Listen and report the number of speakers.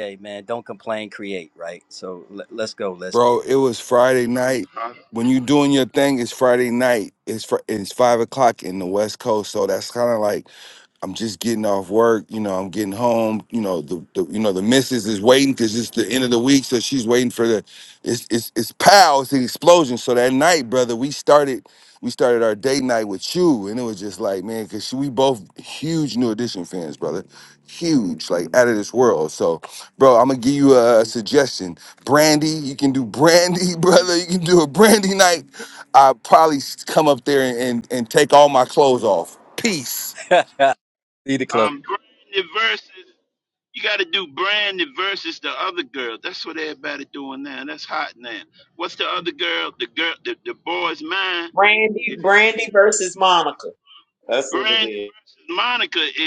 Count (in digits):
4